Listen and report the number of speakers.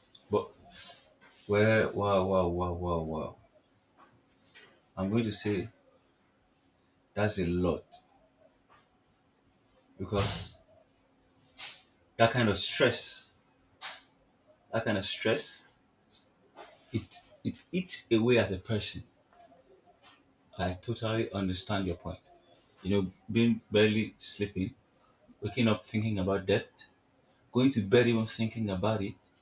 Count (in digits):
1